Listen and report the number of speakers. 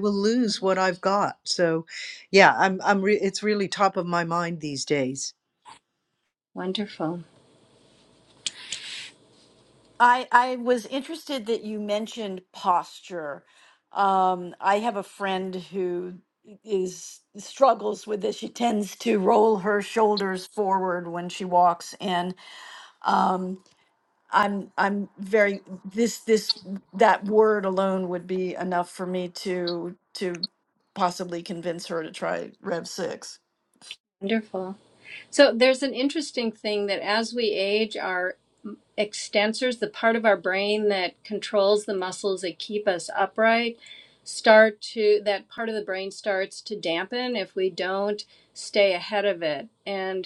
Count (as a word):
three